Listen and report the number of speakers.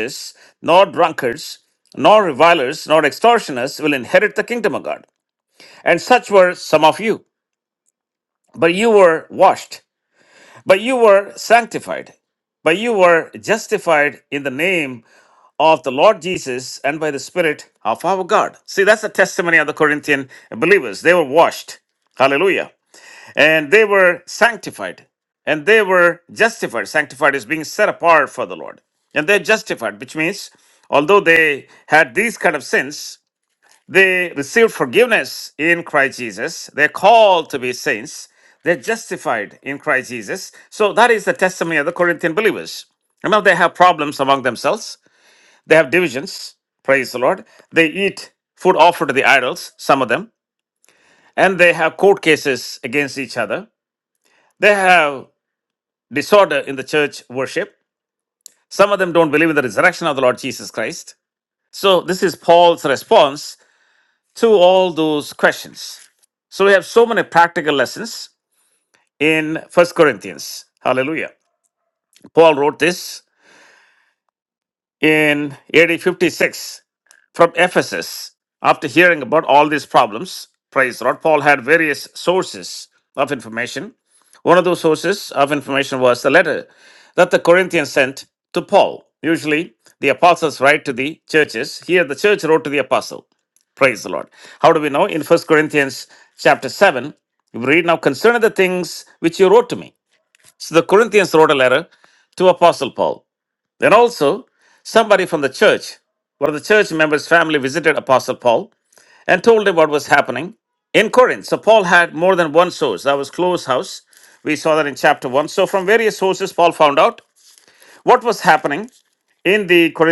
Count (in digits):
1